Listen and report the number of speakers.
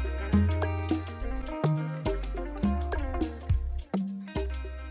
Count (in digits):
0